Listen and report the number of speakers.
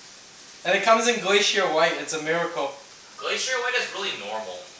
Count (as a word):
two